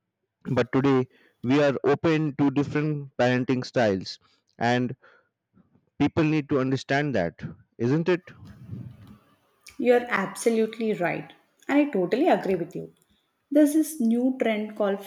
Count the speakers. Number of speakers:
two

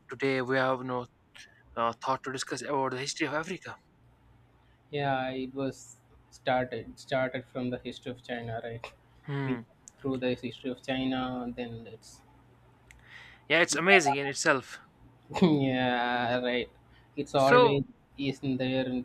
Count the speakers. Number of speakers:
two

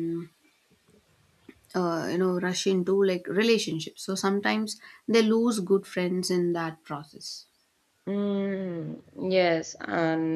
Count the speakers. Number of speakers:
two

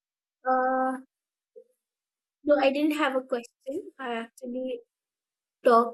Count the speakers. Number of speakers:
one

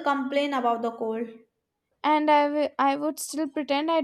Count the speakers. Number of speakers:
two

